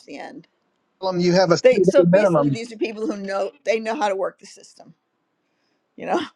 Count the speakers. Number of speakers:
2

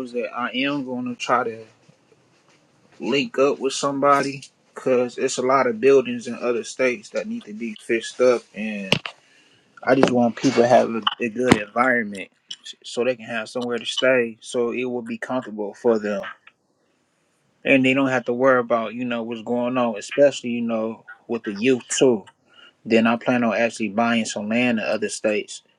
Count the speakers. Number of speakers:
1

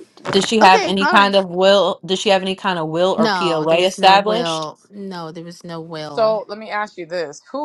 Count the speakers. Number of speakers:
3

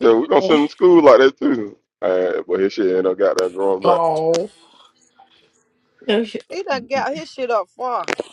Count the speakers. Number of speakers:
3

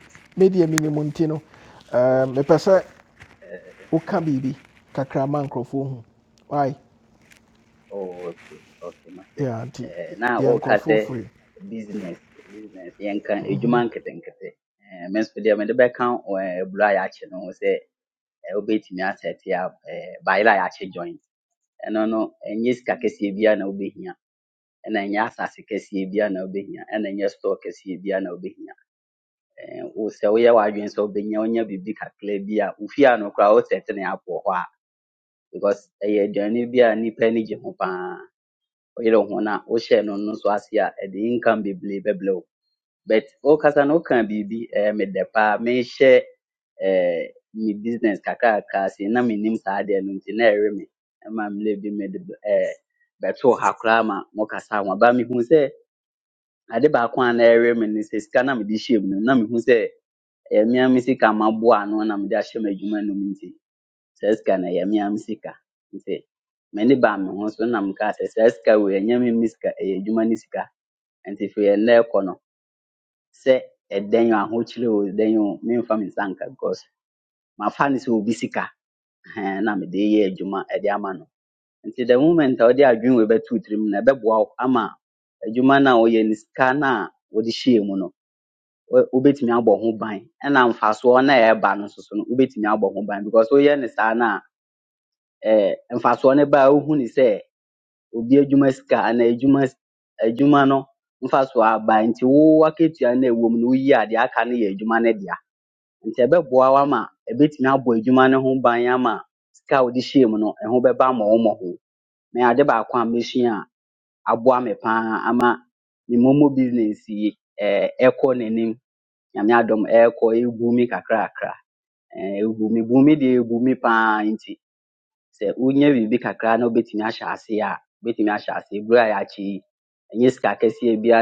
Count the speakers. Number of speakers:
2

